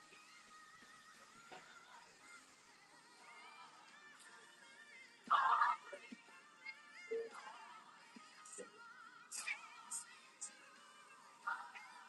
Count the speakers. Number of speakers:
0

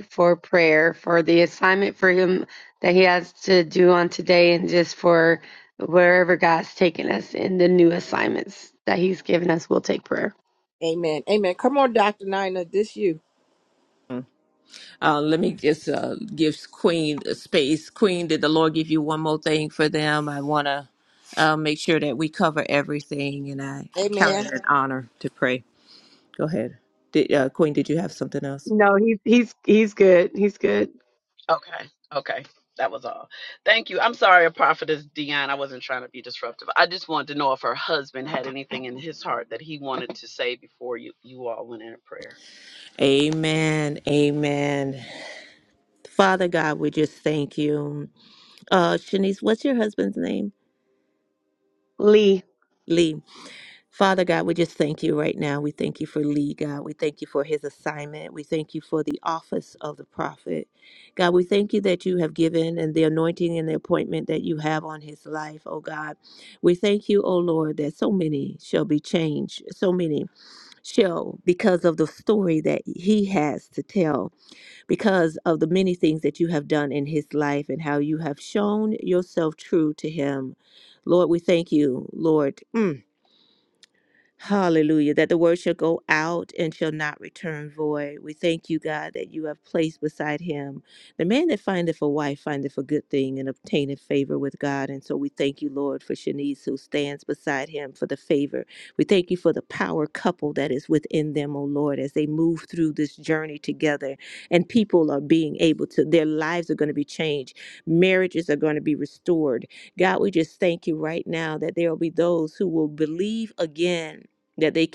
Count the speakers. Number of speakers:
4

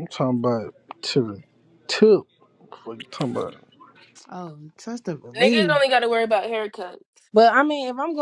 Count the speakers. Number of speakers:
3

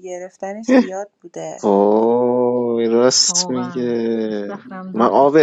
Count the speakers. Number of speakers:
3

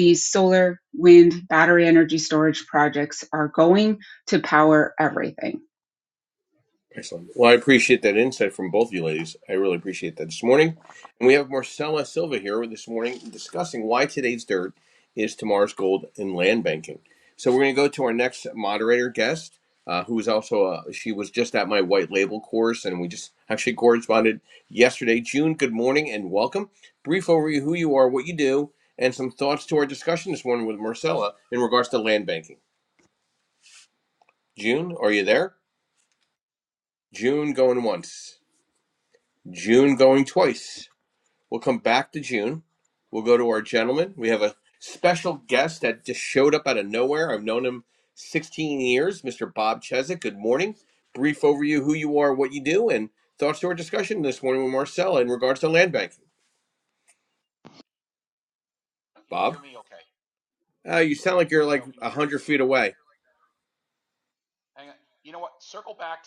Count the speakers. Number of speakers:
3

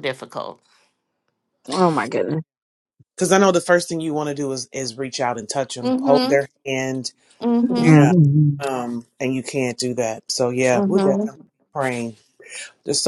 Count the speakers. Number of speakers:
3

